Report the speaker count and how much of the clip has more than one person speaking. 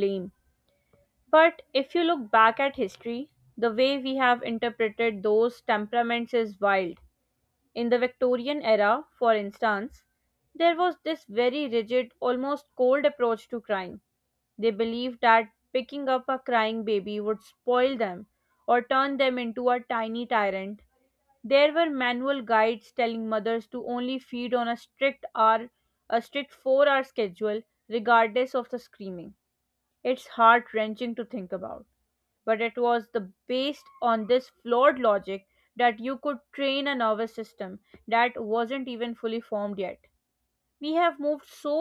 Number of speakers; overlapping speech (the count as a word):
one, no overlap